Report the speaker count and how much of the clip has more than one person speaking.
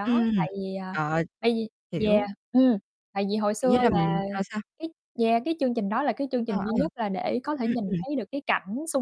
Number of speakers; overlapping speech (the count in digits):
2, about 25%